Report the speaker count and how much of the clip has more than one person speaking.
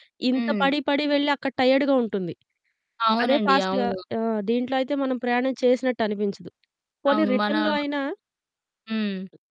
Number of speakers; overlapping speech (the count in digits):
2, about 18%